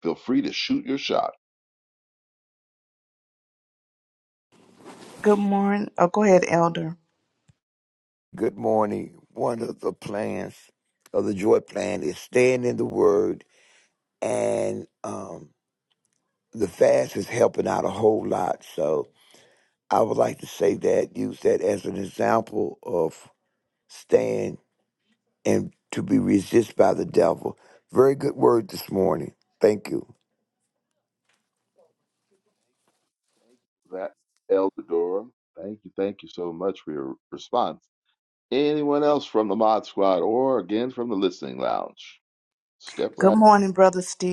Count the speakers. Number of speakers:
three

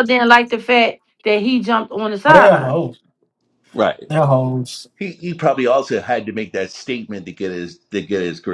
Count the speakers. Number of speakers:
three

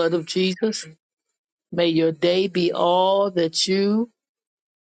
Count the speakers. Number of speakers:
one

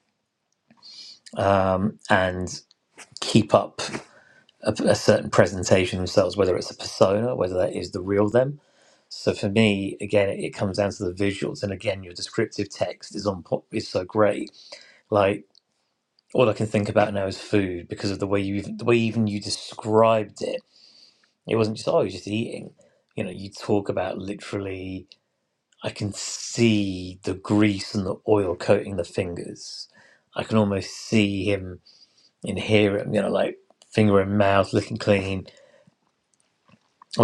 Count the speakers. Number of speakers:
one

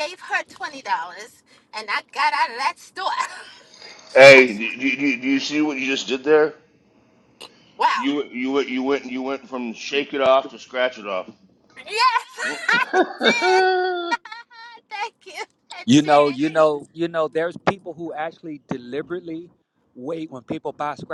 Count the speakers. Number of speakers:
three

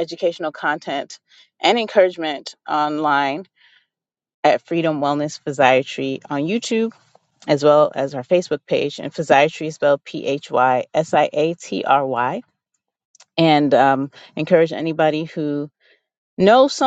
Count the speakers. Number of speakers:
one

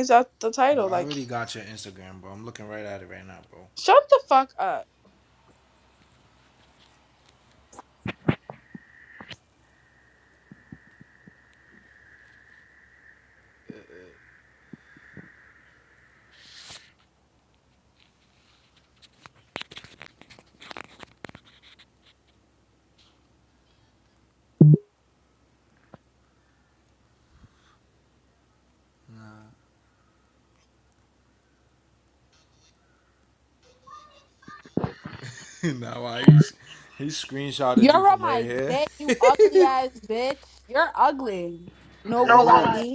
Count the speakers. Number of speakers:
three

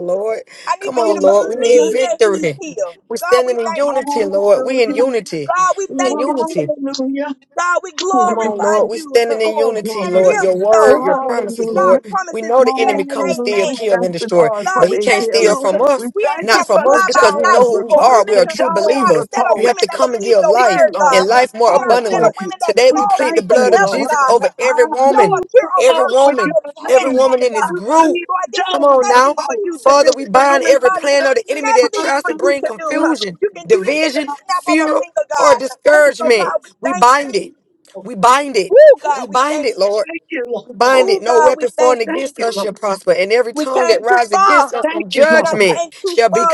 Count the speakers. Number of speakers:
three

